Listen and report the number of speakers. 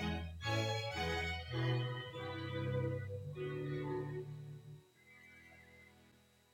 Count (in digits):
0